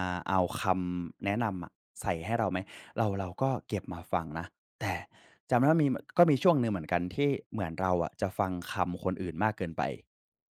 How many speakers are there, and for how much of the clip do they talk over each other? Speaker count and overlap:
1, no overlap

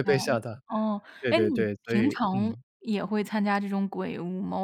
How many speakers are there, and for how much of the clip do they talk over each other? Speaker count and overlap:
2, about 31%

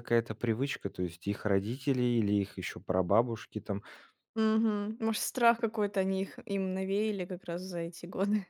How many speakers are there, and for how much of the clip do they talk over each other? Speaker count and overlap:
2, no overlap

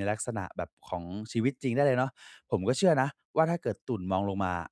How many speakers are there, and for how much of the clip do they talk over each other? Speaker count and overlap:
1, no overlap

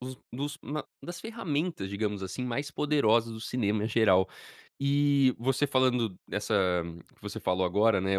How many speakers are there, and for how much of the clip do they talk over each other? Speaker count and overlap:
1, no overlap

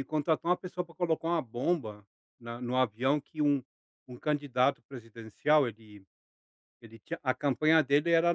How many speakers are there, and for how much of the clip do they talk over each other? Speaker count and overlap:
1, no overlap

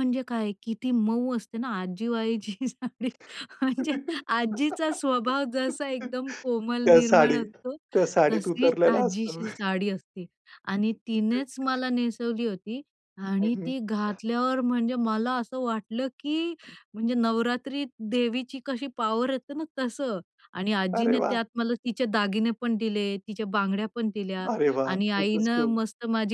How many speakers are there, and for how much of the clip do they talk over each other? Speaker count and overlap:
2, about 13%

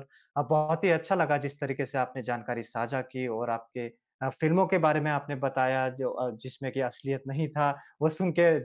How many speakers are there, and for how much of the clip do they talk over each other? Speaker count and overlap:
1, no overlap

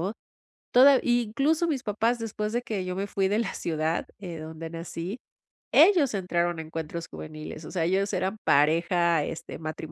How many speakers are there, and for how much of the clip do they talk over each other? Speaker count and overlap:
1, no overlap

